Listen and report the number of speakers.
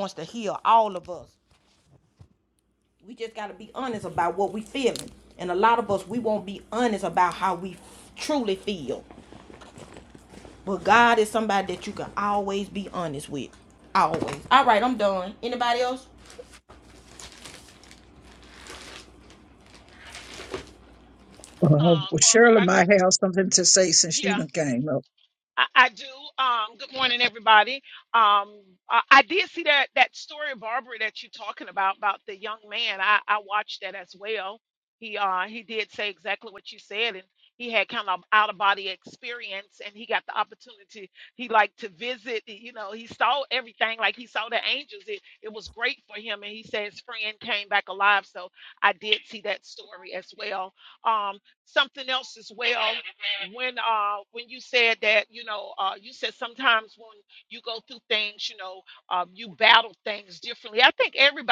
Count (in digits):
3